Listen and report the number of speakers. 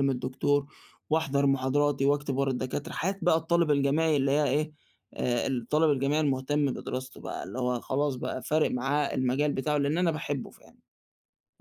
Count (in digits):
1